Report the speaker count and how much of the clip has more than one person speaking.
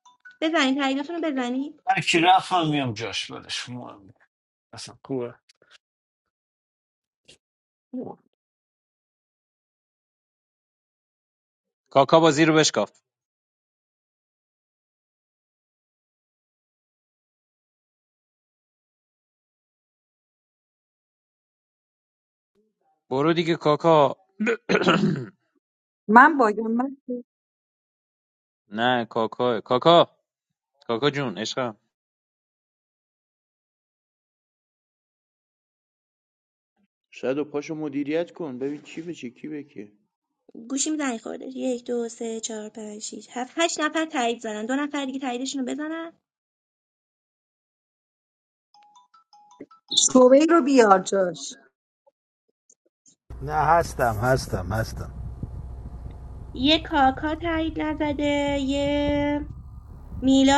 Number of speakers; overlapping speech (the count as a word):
six, no overlap